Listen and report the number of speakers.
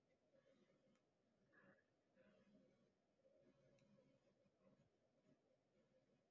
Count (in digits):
0